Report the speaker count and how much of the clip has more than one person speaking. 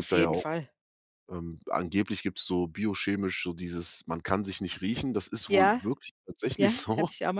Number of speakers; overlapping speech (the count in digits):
2, about 18%